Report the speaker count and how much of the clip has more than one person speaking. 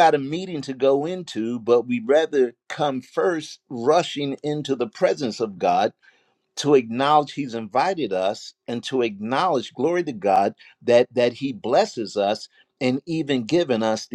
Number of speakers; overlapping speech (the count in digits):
1, no overlap